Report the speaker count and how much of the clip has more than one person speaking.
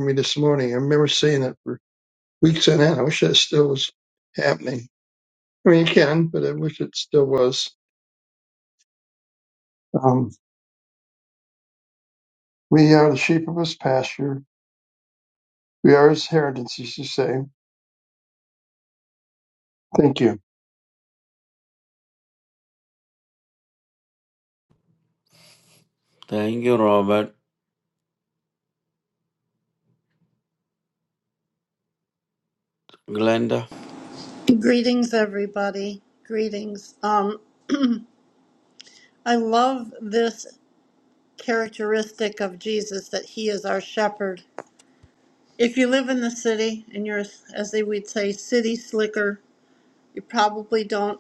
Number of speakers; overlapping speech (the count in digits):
3, no overlap